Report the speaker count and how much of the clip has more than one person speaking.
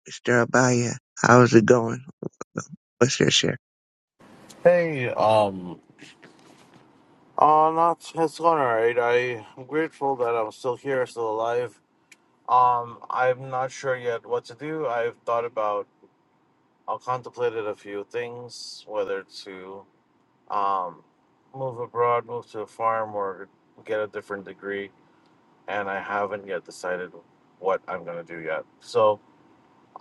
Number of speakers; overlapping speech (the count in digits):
2, no overlap